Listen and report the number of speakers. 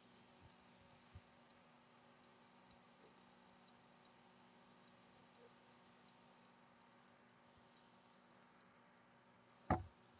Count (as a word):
zero